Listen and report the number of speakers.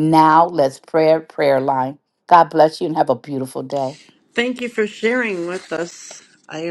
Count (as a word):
two